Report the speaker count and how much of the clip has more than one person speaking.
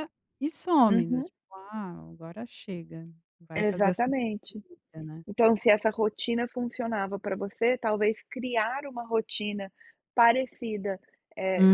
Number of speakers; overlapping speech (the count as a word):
two, about 9%